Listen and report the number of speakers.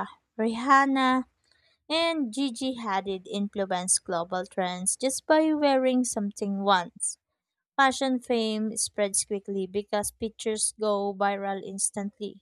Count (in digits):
1